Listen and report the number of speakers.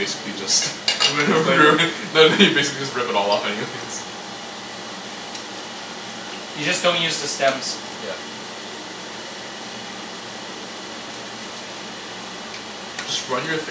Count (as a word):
two